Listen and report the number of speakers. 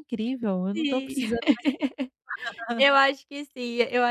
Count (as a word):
two